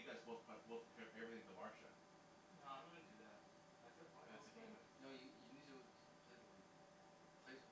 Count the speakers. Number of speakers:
3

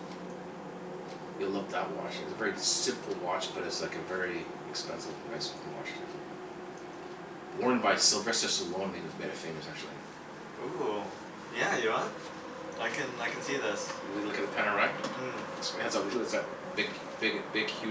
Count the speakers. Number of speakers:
2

